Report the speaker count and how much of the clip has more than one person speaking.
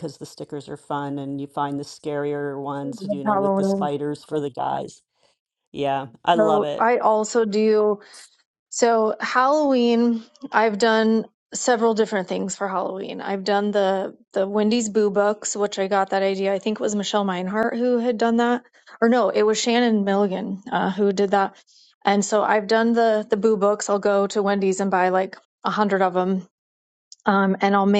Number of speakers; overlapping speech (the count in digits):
2, about 4%